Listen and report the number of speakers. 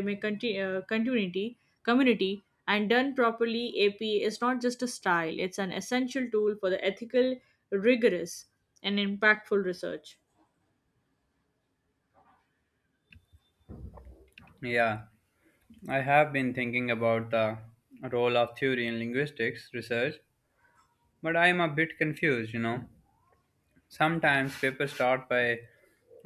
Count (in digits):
2